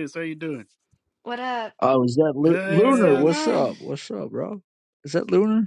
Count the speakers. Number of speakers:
three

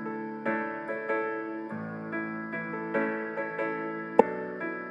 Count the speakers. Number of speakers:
zero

